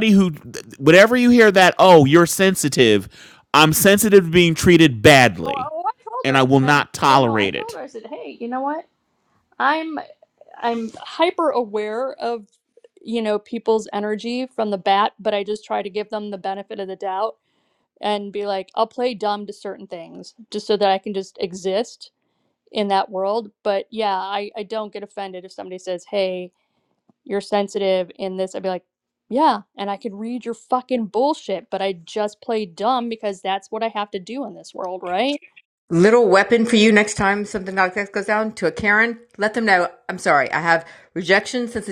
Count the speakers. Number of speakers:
three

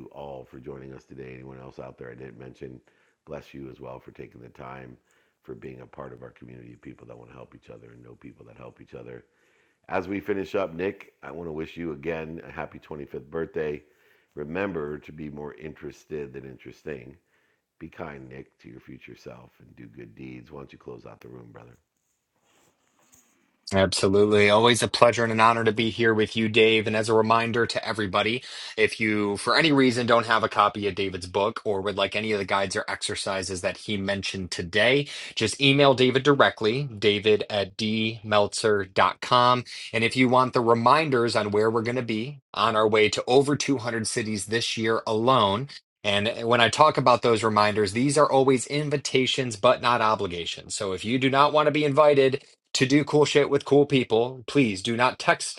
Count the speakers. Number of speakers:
two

